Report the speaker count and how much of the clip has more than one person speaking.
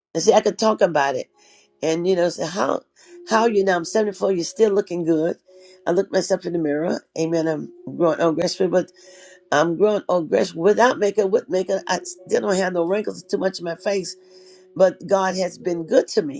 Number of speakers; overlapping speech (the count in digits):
1, no overlap